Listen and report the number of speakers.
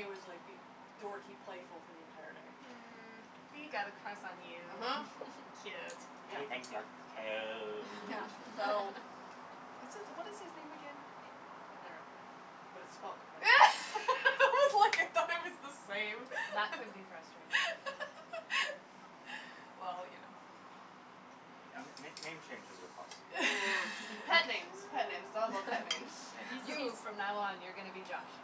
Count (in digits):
4